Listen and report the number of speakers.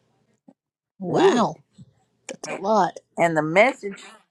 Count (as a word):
two